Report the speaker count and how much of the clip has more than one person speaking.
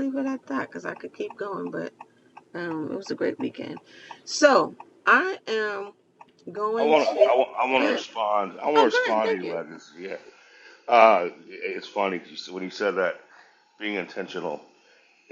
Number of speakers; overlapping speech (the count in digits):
2, about 12%